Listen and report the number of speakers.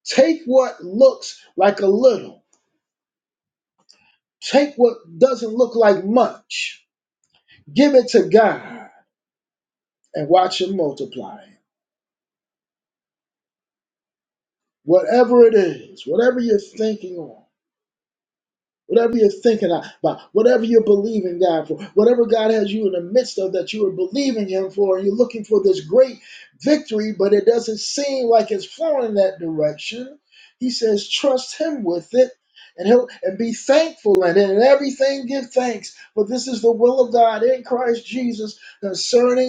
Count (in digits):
1